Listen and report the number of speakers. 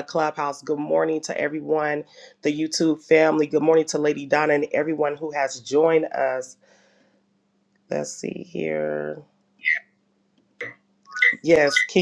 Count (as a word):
one